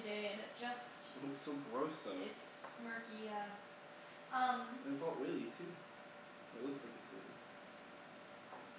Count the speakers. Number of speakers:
2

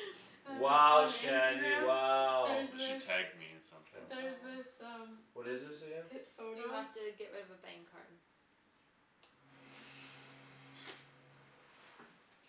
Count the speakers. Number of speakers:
4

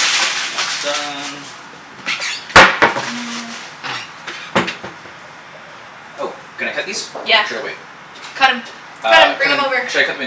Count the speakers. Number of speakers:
2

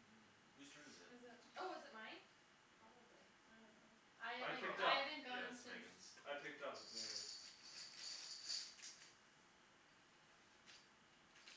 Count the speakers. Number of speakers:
4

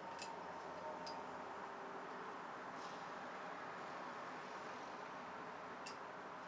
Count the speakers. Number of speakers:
0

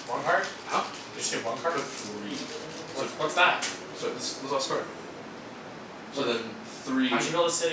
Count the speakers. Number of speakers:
2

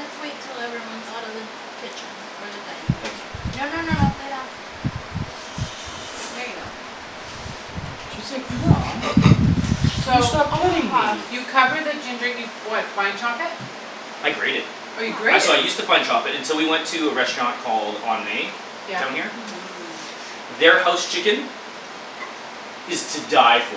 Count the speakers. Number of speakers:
3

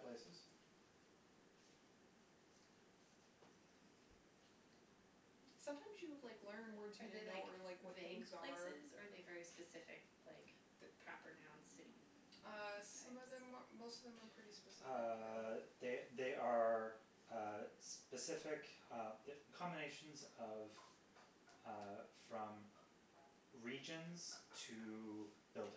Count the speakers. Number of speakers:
3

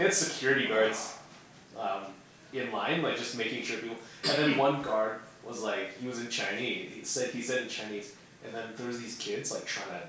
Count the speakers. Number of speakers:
1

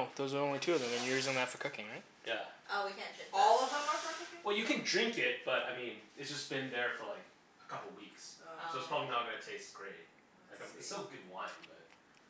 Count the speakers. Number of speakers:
4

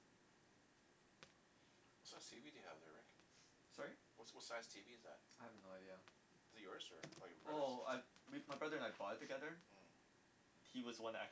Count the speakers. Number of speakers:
2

